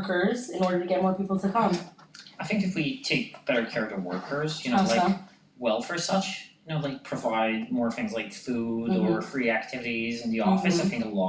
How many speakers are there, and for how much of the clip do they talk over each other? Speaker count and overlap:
two, about 8%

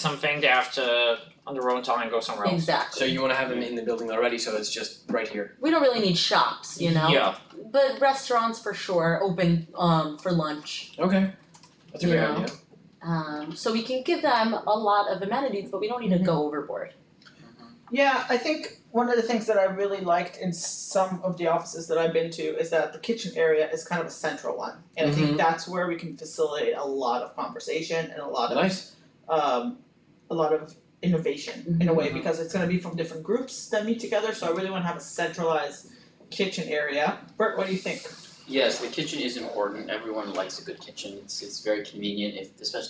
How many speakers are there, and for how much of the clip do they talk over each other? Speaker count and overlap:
five, about 6%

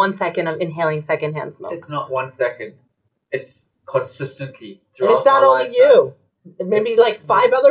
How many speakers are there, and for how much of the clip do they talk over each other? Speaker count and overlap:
three, about 16%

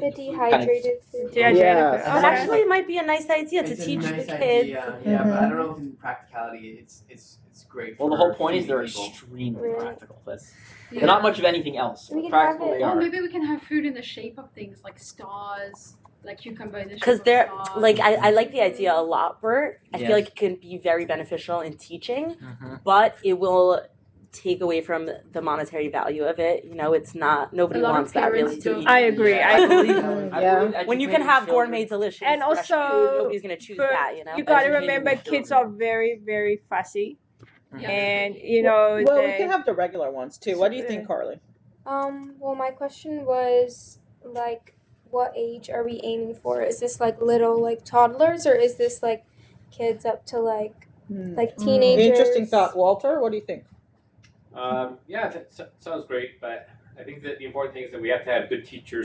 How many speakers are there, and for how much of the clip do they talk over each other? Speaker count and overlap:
eight, about 33%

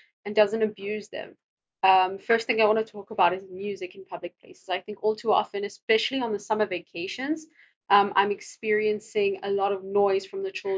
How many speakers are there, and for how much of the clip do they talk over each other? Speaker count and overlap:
one, no overlap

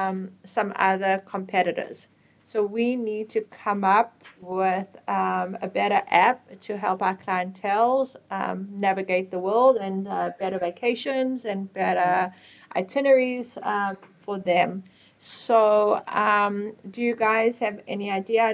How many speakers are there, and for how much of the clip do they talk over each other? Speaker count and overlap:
one, no overlap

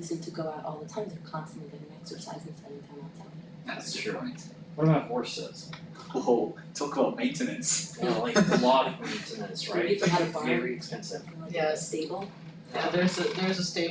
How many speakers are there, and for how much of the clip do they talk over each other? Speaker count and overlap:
four, about 23%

